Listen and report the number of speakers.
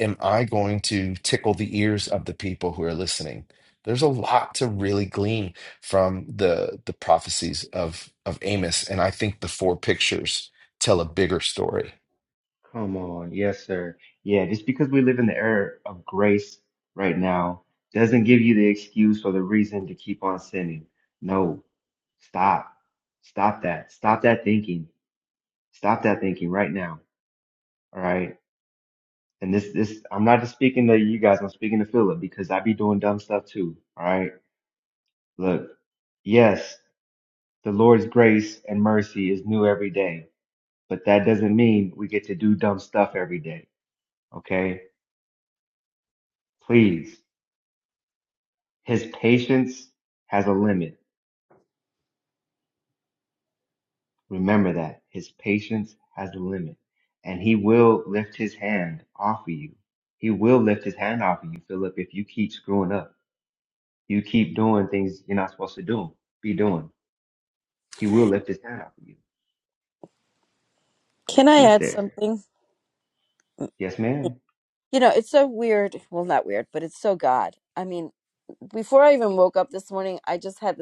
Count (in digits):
3